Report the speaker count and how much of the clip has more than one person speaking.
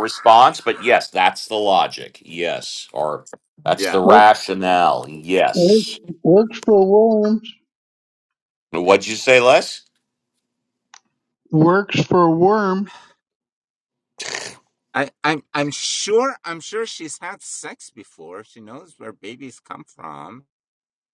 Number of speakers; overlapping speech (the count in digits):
3, about 3%